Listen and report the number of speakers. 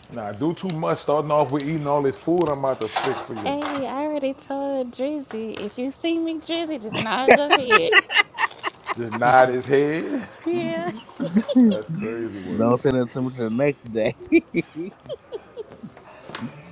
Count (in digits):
3